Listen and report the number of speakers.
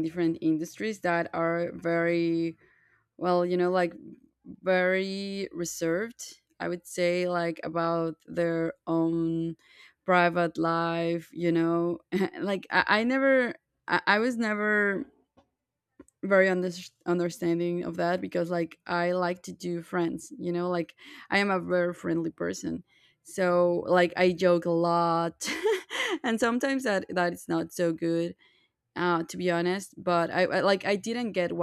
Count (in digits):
1